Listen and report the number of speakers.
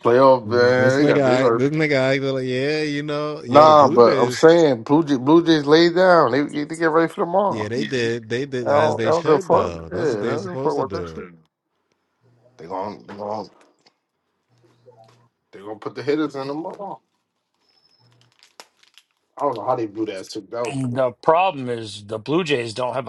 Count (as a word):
three